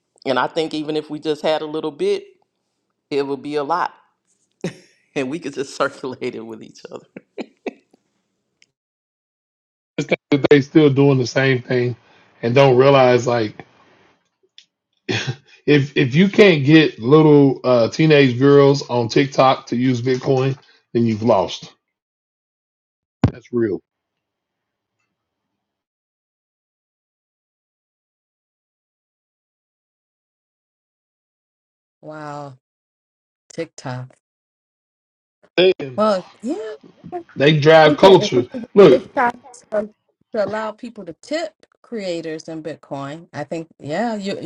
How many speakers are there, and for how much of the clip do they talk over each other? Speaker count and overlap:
three, about 3%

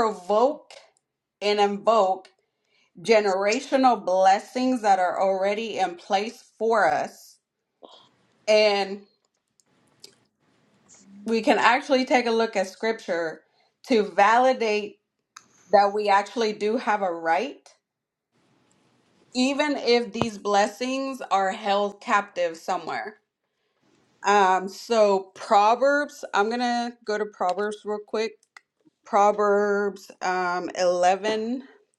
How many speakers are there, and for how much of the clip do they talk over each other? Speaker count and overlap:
one, no overlap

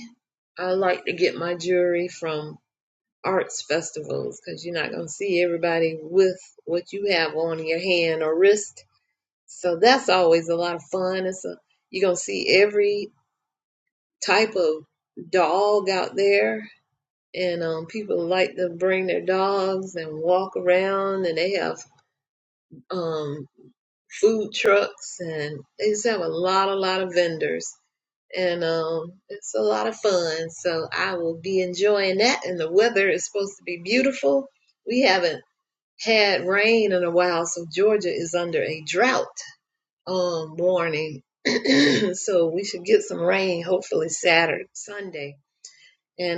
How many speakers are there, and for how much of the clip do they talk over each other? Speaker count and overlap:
one, no overlap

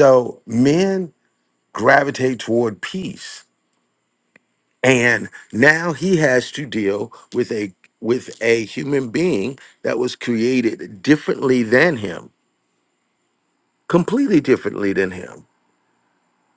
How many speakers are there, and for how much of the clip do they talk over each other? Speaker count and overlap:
one, no overlap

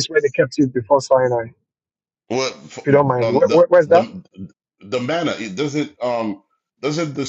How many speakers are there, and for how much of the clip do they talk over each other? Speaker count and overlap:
two, about 17%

